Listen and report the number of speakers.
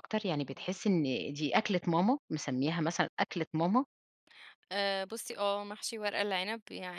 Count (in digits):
2